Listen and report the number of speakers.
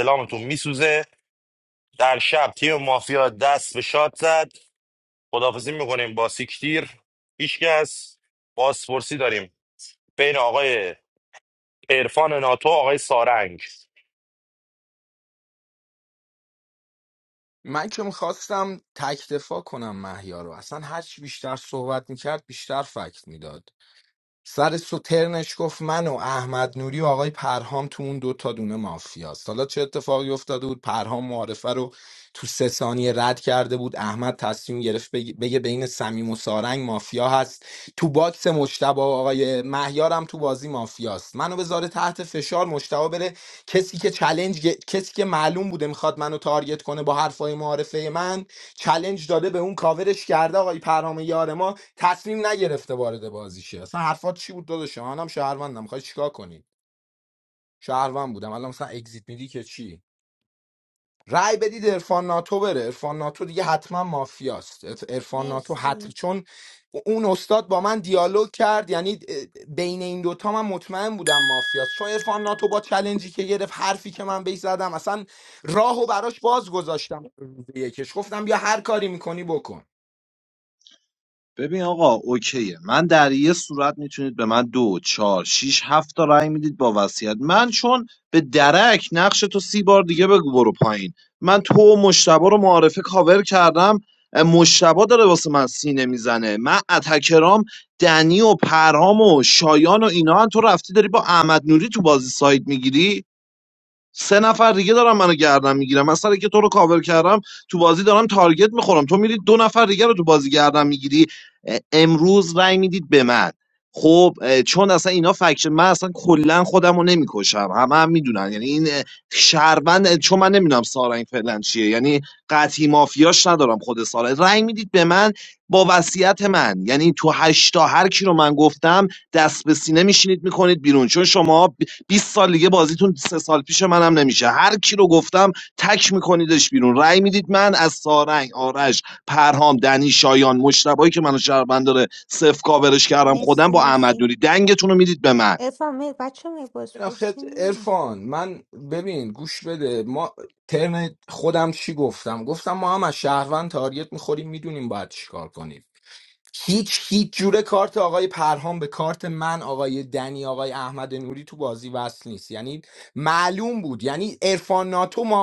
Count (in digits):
4